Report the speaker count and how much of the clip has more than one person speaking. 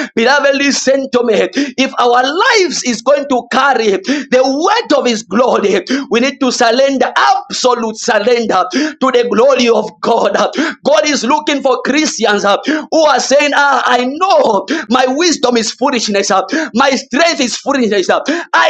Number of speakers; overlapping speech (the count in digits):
1, no overlap